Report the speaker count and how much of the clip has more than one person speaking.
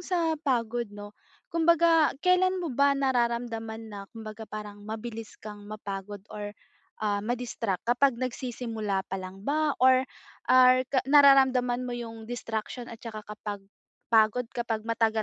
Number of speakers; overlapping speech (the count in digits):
1, no overlap